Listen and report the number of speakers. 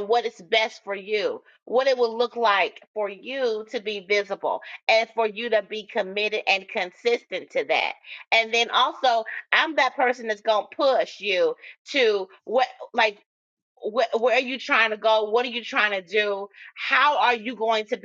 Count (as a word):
one